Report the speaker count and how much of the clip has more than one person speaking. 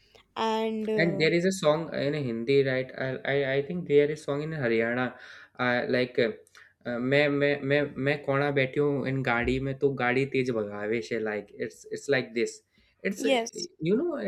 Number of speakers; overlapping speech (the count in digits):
2, about 4%